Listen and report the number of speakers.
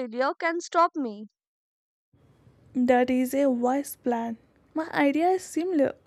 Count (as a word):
two